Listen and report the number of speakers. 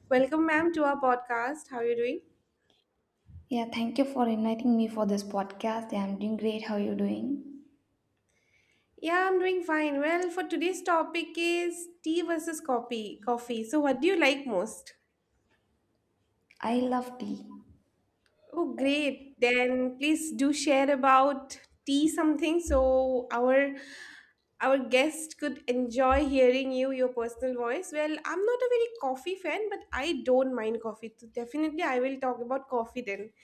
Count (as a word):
two